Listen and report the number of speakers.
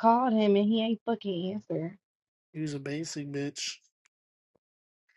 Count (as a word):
two